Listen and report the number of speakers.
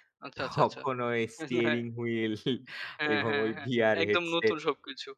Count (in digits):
2